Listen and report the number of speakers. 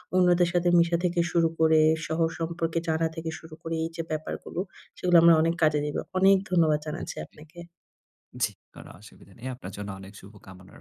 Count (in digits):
2